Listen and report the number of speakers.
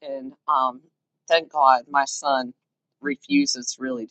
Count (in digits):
1